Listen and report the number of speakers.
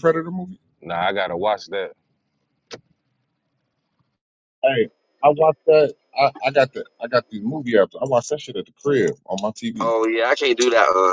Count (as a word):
three